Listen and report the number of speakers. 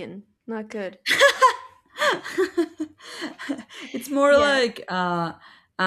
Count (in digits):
2